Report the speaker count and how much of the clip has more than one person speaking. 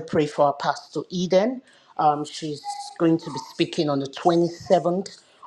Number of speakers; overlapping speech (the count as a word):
one, no overlap